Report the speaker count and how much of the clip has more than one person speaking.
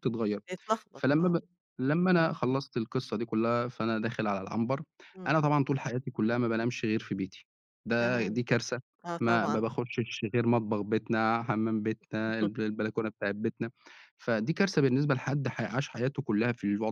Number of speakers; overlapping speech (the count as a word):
two, about 7%